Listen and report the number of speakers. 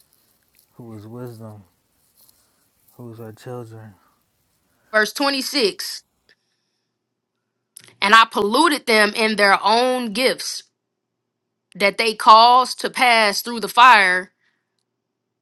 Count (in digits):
2